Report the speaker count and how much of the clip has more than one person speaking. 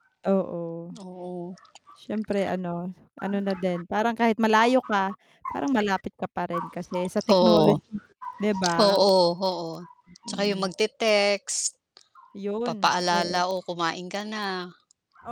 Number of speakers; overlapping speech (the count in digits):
2, about 12%